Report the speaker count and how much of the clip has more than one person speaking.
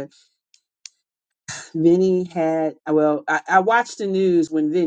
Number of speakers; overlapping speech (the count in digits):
1, no overlap